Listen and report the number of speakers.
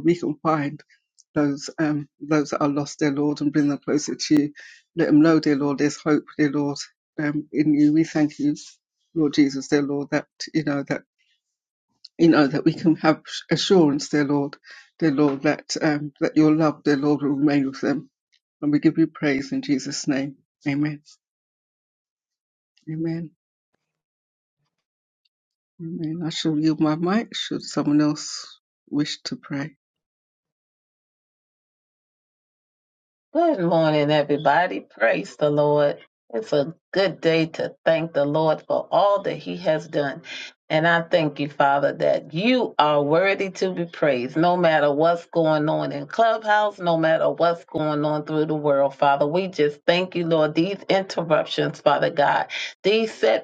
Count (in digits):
2